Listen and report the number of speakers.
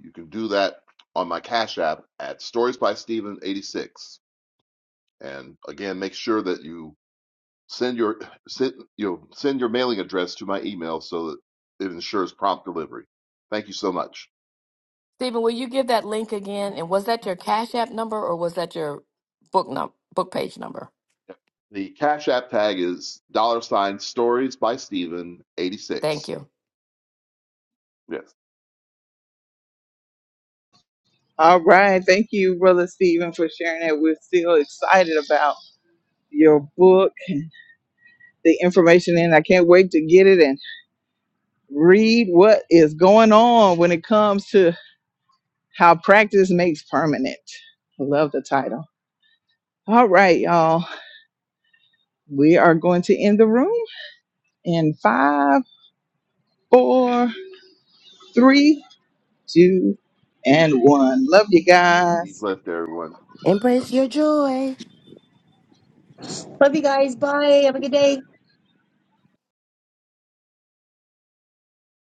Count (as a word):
five